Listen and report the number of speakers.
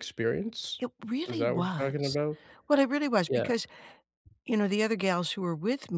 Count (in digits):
2